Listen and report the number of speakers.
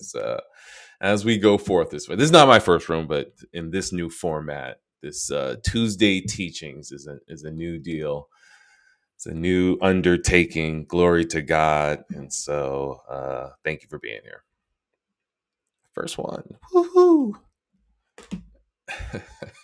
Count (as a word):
one